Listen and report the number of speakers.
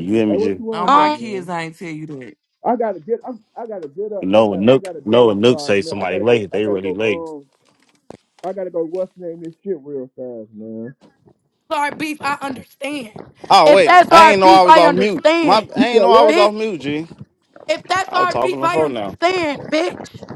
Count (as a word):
four